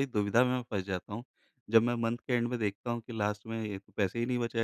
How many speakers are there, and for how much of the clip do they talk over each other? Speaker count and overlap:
1, no overlap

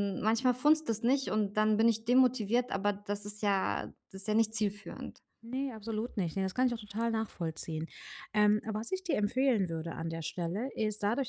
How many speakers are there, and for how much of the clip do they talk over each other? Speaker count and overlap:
2, no overlap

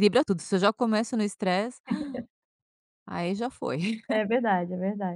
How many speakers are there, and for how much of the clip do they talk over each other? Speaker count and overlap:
2, no overlap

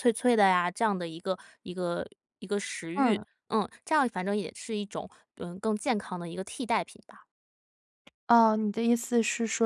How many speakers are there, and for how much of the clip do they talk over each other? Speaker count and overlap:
2, about 3%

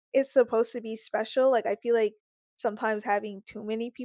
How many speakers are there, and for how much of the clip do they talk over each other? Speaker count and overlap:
1, no overlap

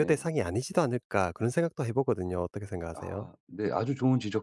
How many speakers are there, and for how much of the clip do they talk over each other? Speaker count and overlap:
2, about 11%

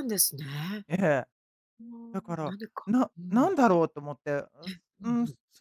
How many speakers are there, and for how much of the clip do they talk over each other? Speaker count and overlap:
2, about 17%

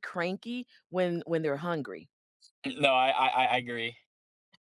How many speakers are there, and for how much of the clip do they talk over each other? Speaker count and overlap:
2, no overlap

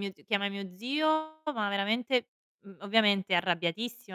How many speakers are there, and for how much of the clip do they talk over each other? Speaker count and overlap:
1, no overlap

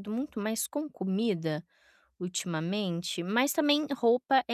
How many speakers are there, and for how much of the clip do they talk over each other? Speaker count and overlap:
1, no overlap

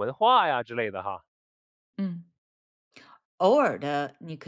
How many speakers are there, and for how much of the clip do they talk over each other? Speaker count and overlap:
2, no overlap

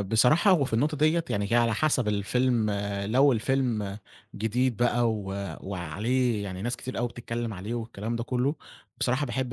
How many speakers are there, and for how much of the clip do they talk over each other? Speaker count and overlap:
1, no overlap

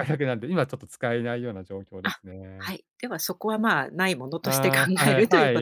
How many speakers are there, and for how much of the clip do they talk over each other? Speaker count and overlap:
2, about 27%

